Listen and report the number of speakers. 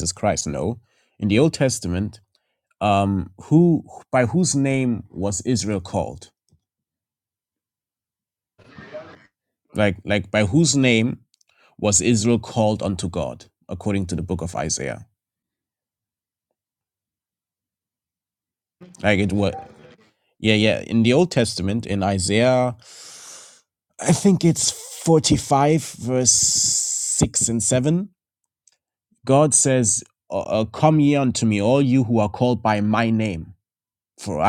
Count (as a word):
one